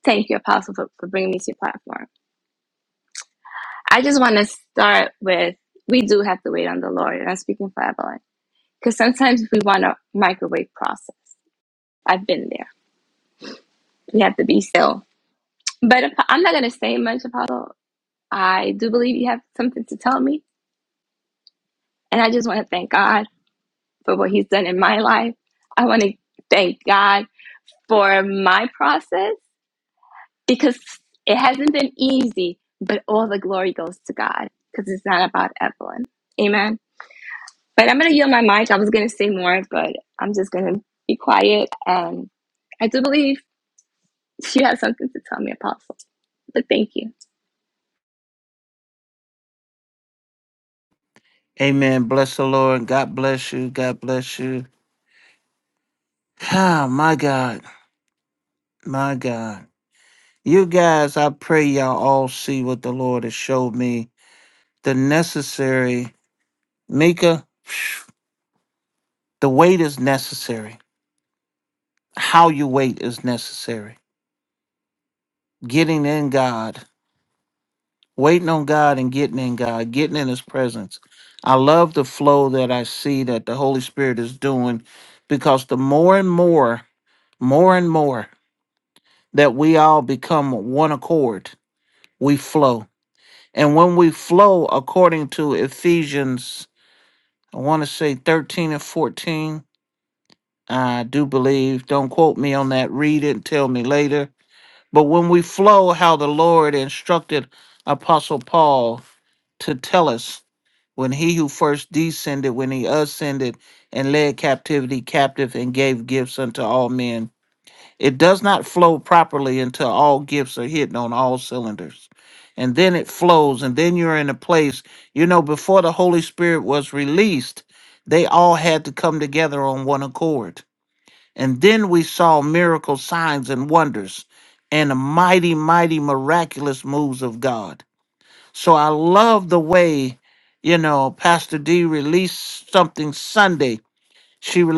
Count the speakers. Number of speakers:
2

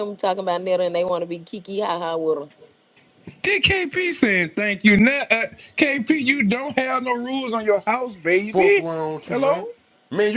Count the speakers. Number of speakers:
3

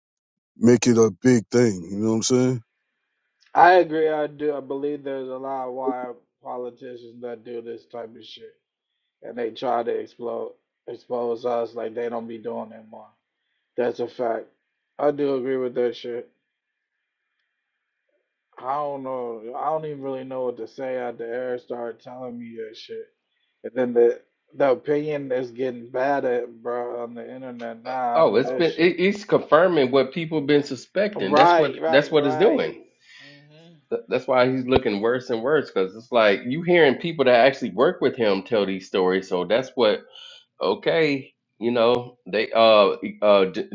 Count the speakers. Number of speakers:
3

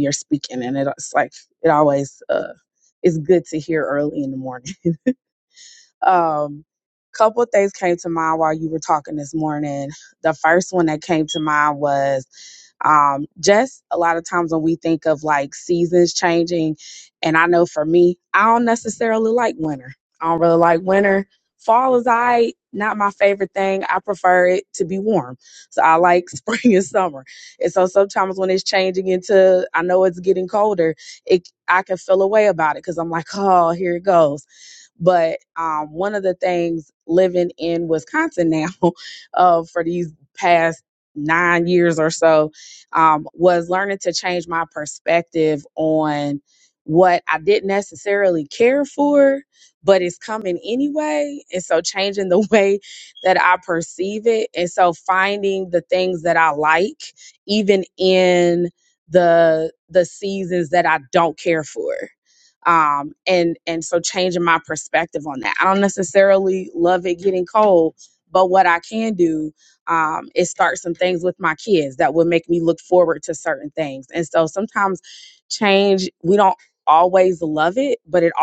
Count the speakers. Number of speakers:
1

